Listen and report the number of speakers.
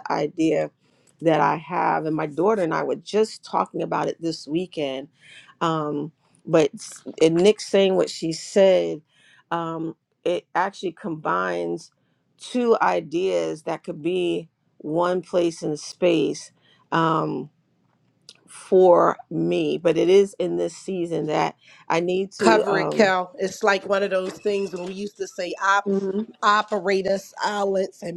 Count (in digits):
2